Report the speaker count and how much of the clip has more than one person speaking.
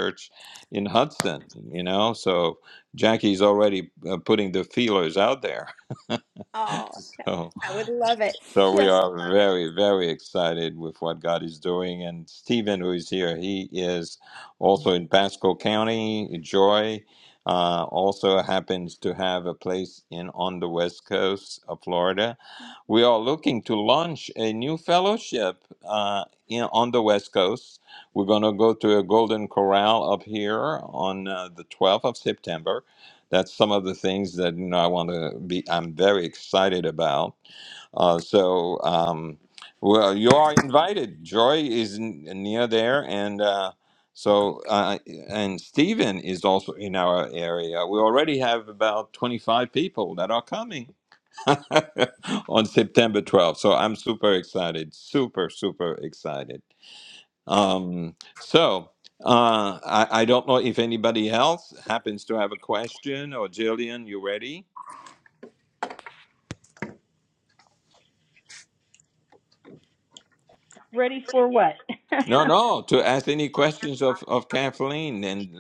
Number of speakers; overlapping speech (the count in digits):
3, about 2%